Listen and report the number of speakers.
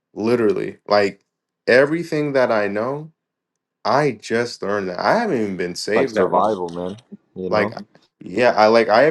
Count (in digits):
2